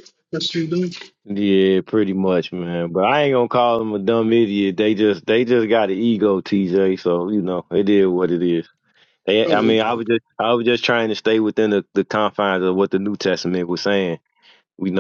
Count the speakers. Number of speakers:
2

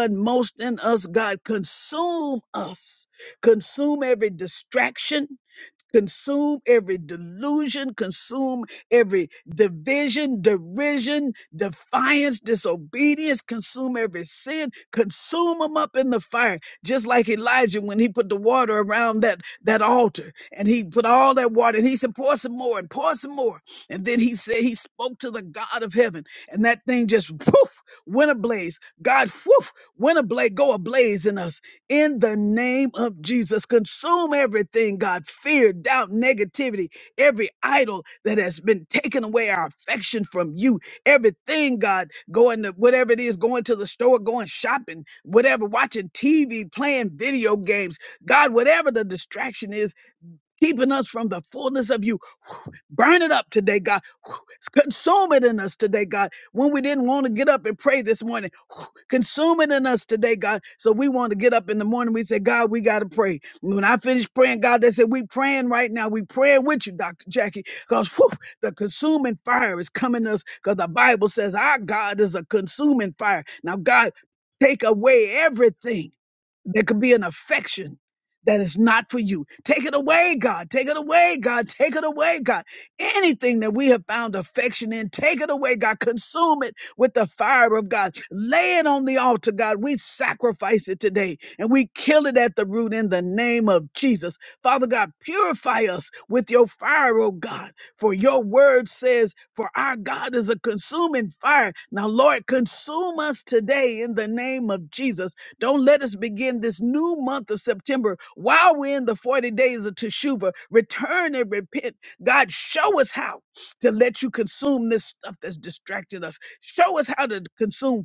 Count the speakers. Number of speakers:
1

